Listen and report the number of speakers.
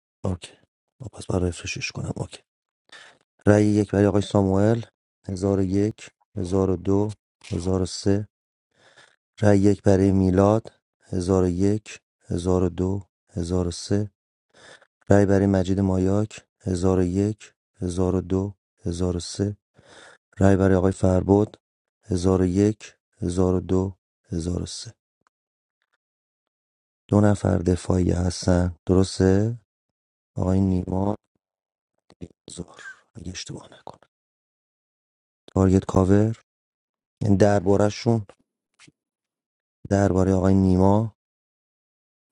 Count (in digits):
1